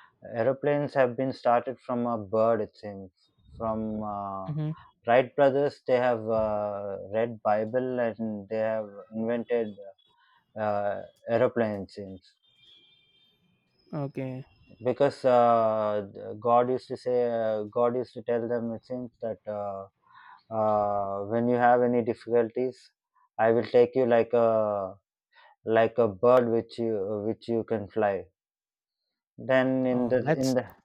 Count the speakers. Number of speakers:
two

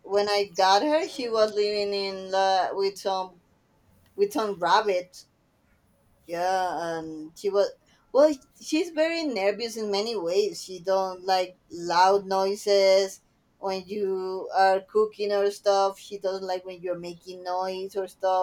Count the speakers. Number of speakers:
one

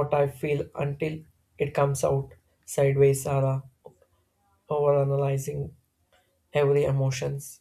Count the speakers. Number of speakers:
one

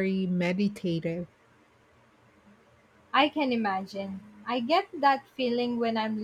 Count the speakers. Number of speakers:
two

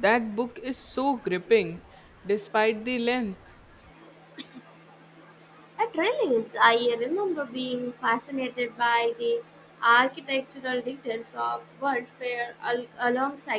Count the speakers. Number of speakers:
two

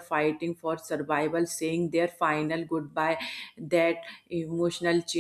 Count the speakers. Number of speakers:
one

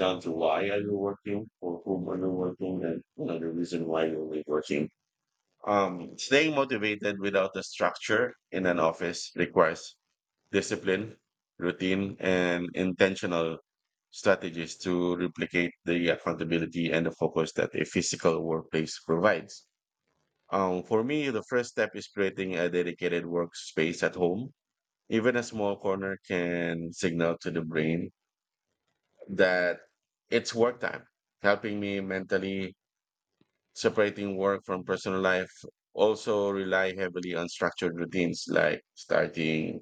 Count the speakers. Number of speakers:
one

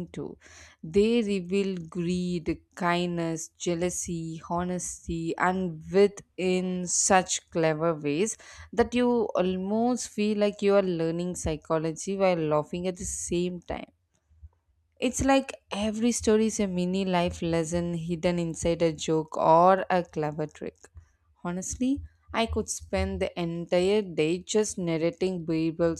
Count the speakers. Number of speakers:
one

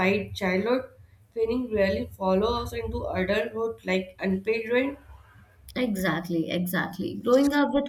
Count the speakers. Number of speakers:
two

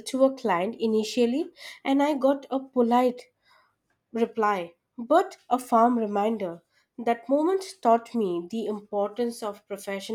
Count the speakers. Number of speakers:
one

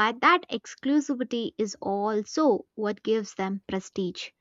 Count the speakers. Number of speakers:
one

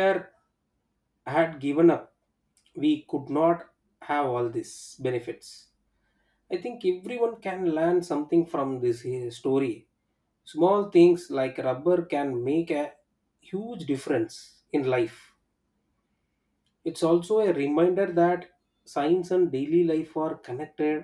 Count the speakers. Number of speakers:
one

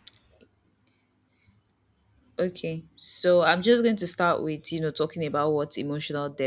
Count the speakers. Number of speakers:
one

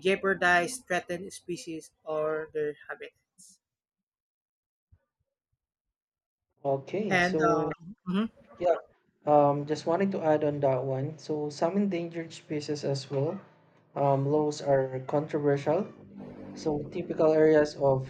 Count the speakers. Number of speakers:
two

